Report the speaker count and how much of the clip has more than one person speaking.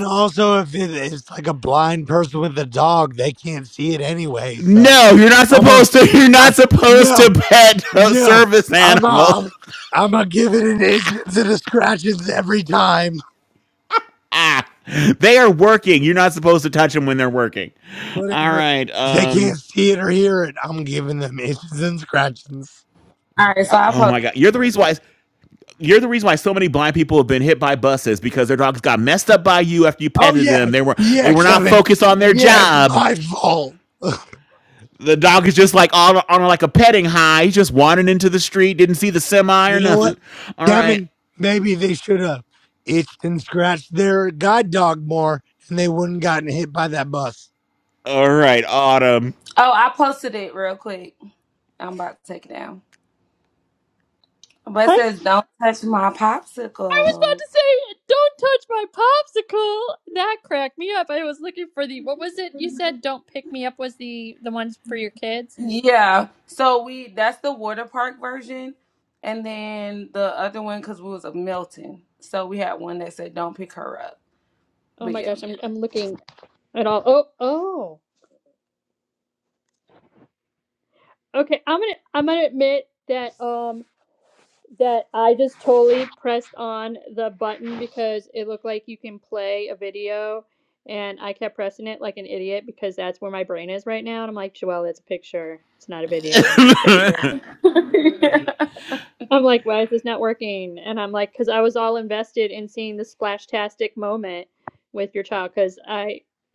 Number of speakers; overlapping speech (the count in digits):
4, about 7%